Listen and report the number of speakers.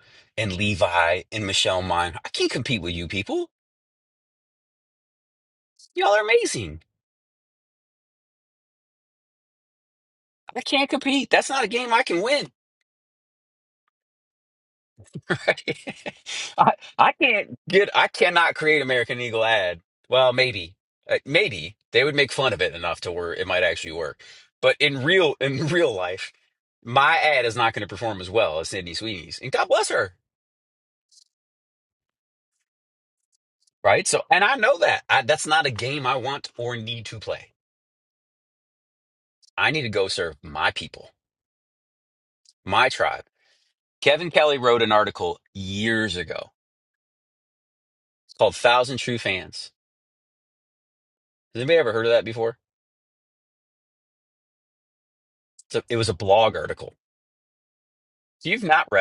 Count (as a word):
one